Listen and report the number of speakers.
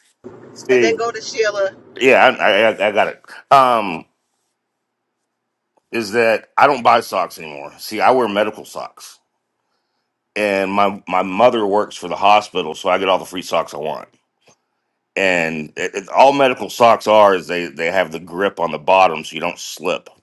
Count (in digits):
2